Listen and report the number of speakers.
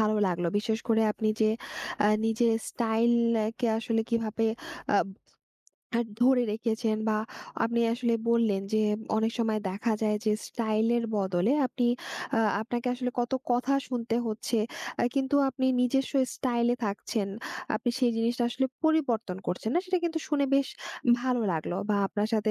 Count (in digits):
1